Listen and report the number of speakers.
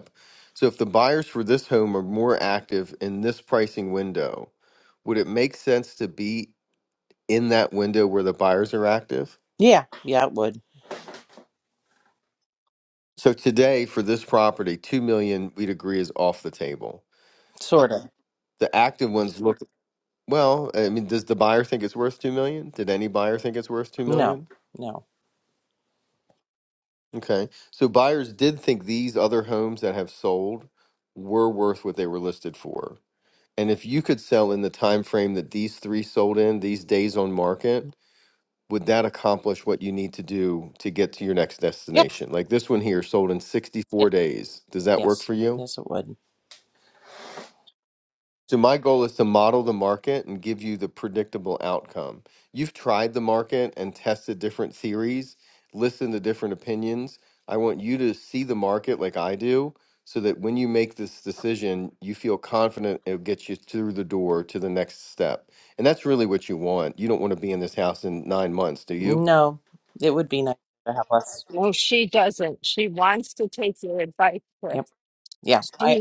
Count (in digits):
3